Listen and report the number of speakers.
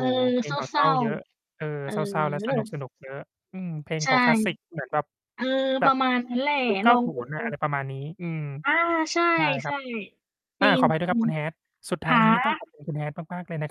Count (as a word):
two